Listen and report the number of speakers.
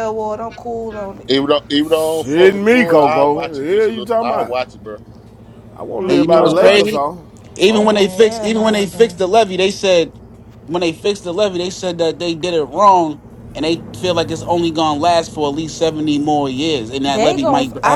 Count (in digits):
4